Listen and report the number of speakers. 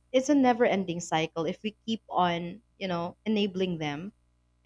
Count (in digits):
1